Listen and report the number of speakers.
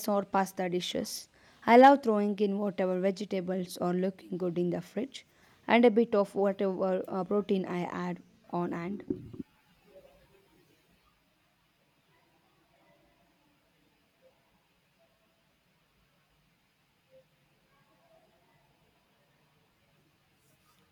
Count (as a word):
one